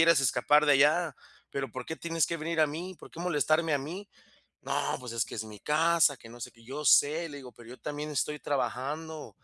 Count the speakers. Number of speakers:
one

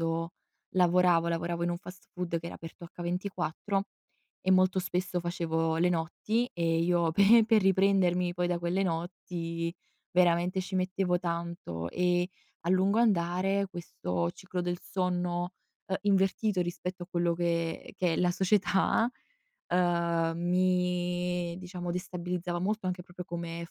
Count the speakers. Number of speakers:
one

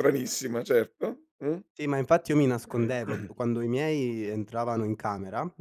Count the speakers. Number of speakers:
two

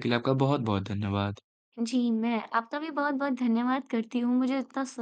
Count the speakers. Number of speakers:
two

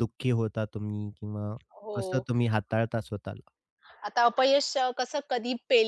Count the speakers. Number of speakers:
two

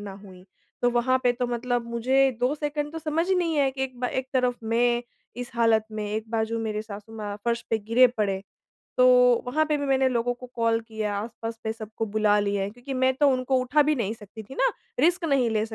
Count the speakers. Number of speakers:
one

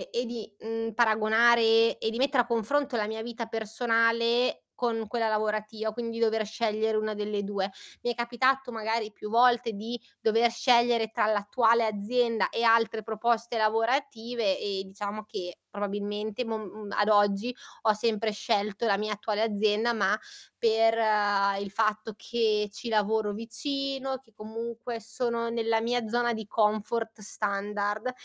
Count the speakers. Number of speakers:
one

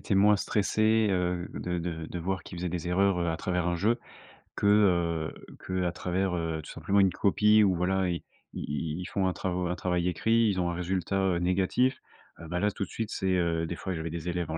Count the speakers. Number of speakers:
one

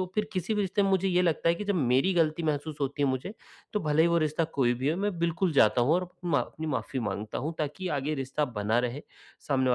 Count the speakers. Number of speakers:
one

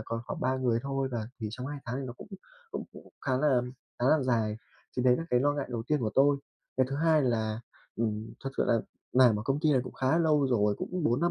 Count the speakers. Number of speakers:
one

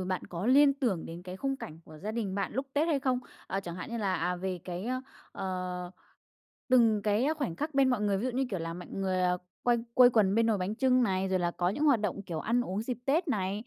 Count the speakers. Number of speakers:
one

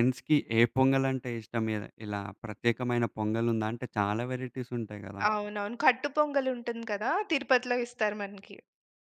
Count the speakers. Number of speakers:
two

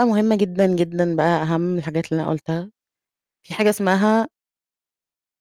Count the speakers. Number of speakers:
one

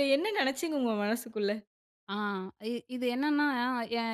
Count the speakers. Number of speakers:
two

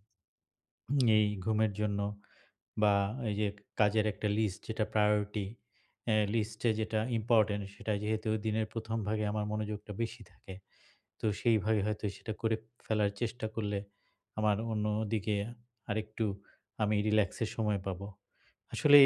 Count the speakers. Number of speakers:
one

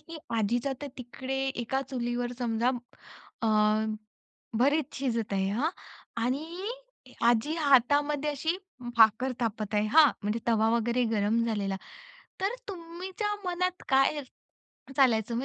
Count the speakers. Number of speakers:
one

